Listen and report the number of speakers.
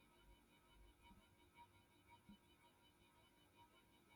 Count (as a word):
zero